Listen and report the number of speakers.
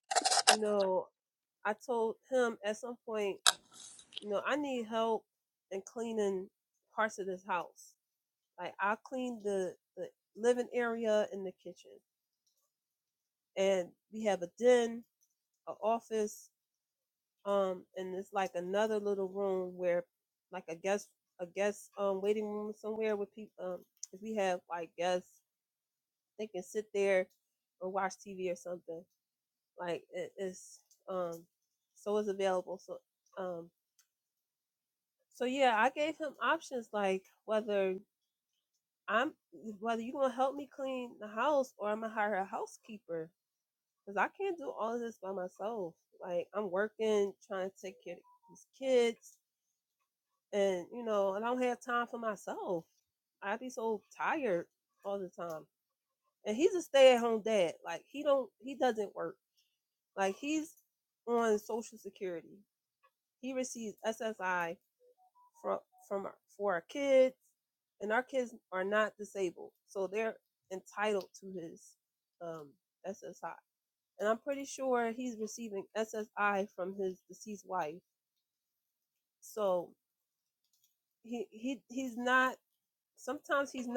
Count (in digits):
1